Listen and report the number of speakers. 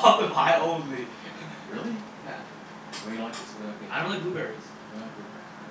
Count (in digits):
2